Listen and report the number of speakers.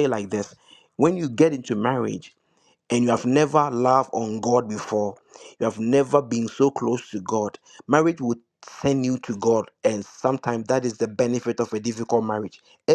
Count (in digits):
1